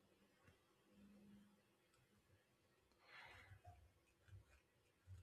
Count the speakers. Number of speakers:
zero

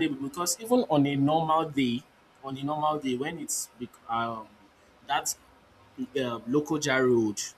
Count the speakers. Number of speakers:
one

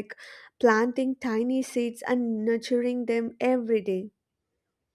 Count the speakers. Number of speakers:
one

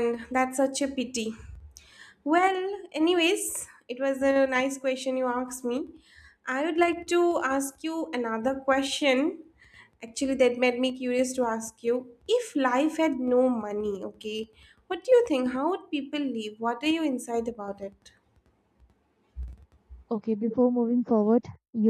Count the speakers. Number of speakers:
two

